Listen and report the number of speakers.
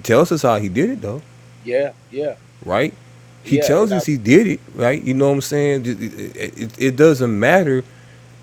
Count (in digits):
2